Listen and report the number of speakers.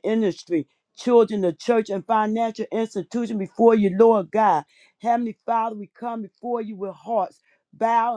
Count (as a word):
one